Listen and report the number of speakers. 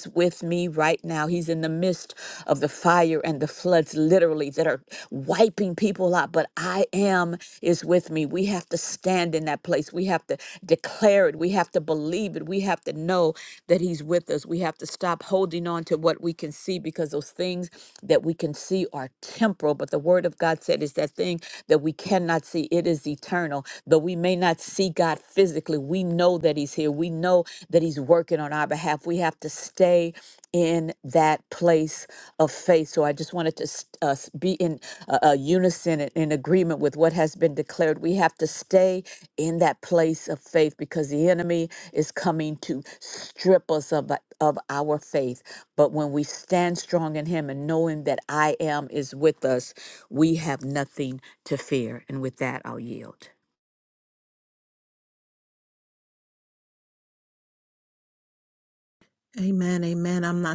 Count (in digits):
2